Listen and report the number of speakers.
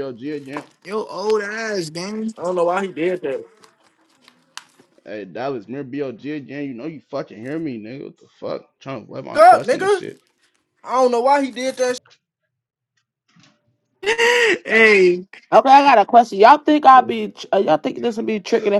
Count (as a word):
four